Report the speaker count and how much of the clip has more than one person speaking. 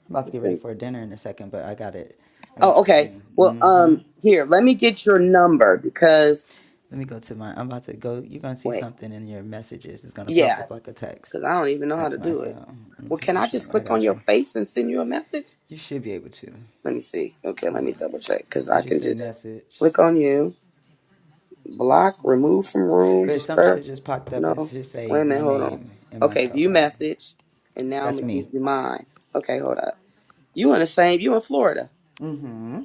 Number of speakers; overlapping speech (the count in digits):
2, about 23%